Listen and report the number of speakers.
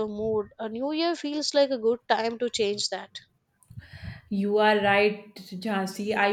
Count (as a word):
two